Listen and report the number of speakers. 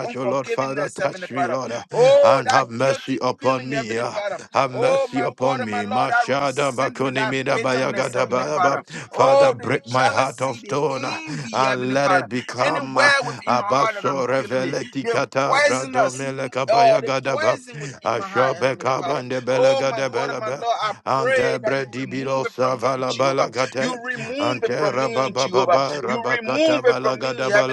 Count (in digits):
2